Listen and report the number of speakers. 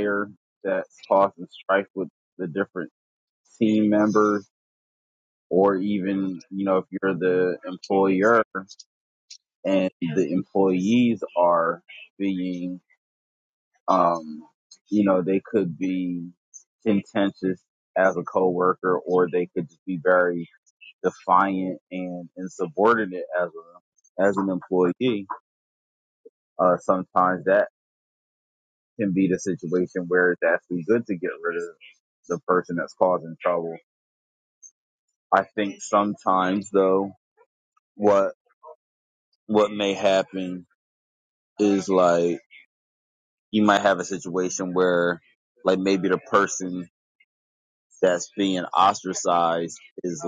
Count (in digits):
1